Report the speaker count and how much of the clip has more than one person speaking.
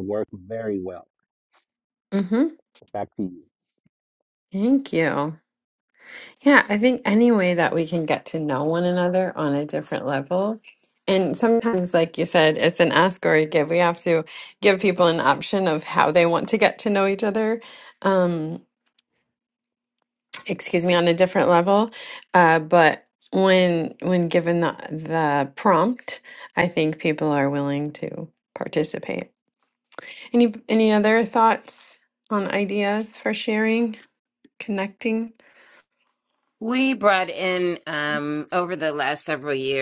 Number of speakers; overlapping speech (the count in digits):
3, no overlap